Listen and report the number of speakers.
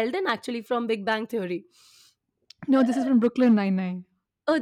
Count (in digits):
2